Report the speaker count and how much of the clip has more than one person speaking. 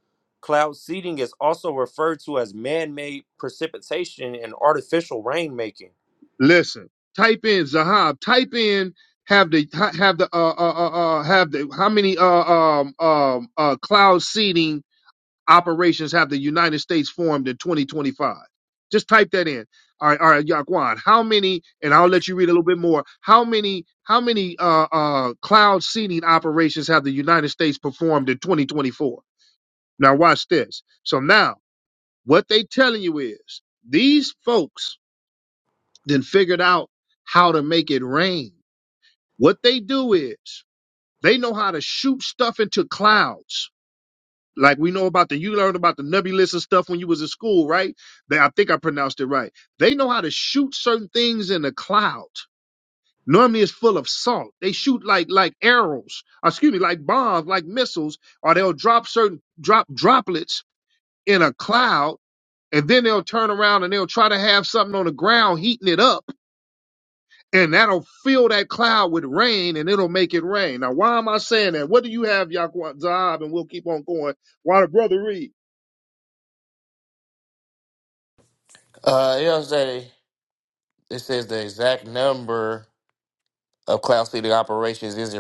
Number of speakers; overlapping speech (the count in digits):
3, no overlap